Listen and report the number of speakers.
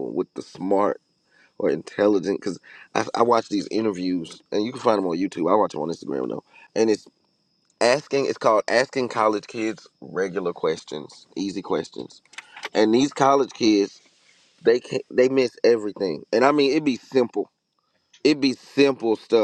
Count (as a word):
one